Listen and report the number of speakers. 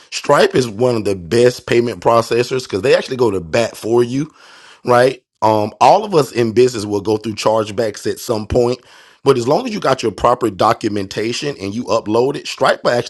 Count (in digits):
1